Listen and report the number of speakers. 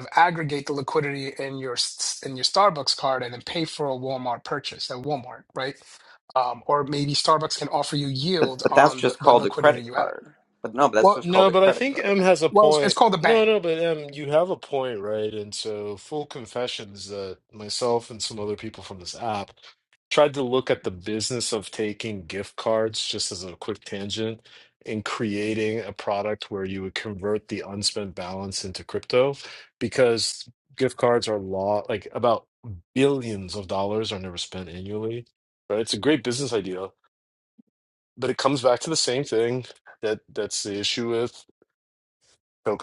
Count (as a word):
three